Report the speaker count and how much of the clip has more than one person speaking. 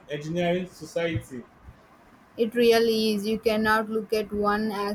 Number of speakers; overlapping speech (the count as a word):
two, no overlap